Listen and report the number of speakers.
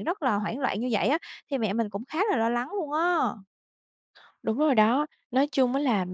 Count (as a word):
two